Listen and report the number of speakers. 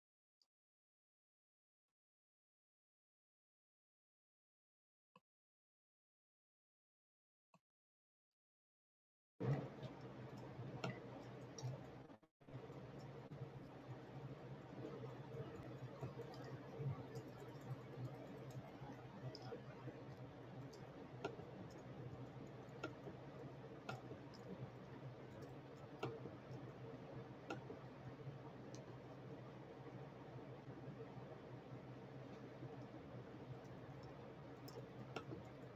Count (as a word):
zero